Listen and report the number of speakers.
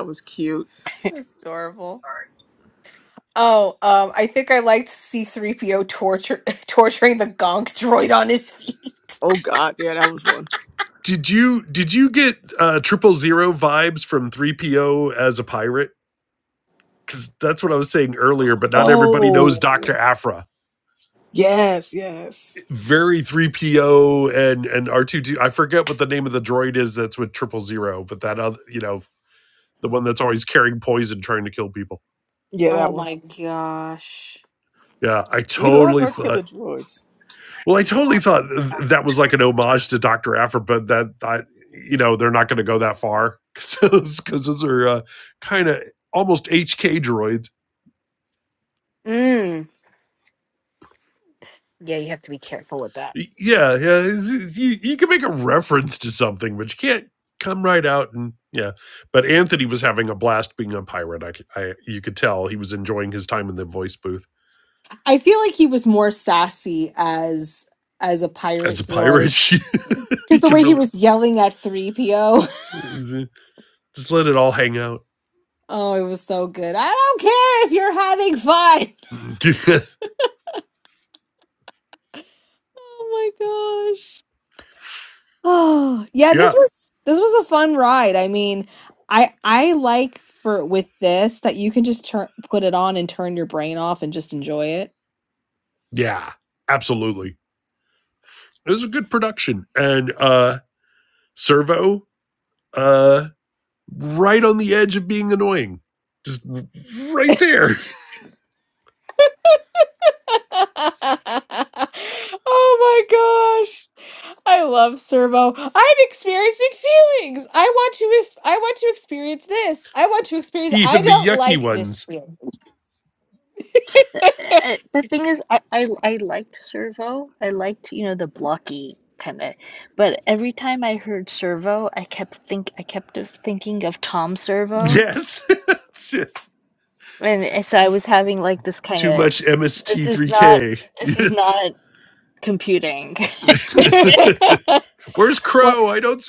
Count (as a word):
four